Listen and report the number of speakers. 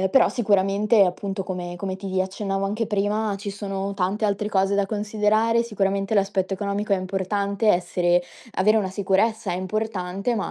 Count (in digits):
1